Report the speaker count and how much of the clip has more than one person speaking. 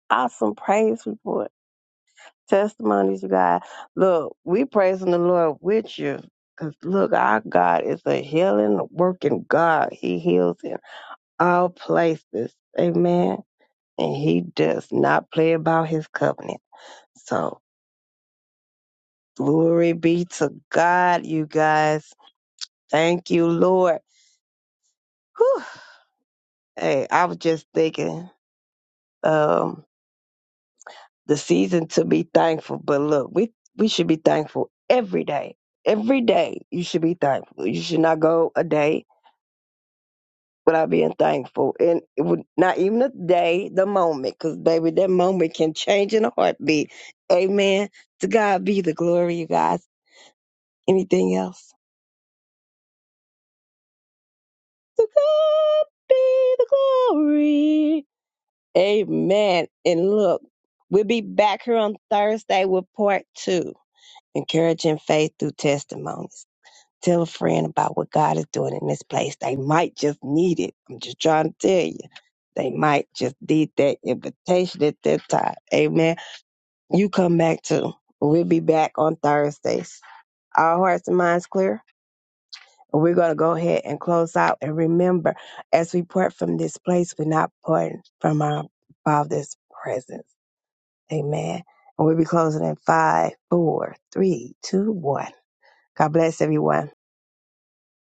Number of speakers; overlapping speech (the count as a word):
one, no overlap